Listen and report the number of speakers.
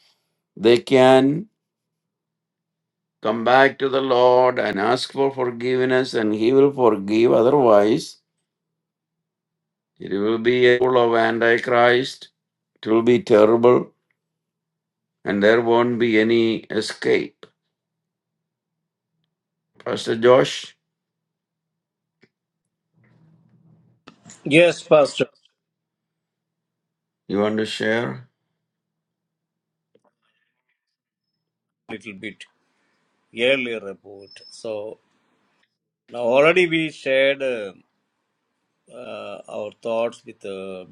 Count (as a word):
two